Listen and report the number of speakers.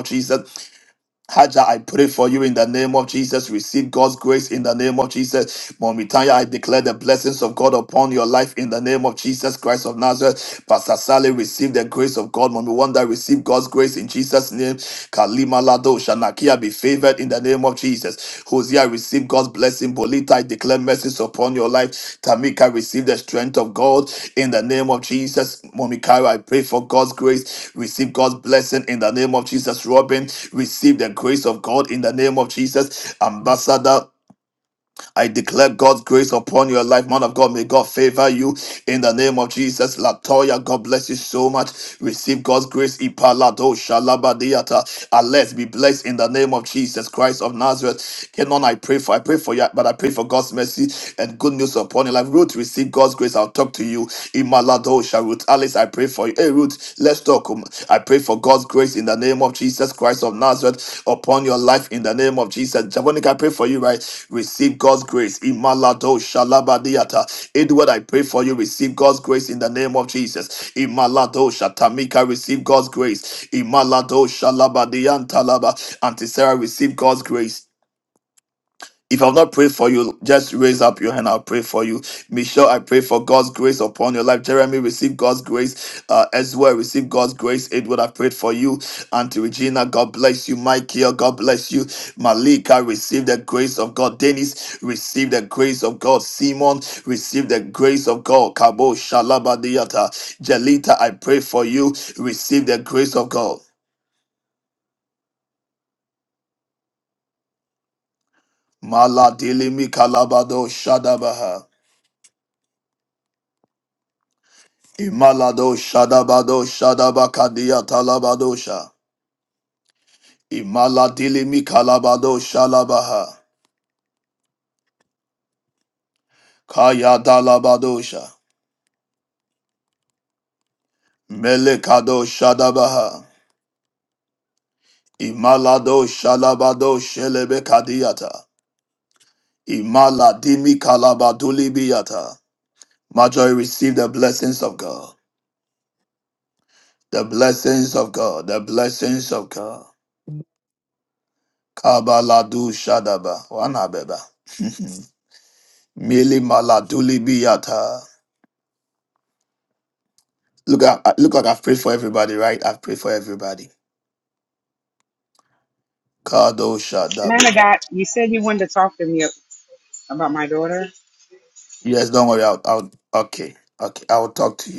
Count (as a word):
two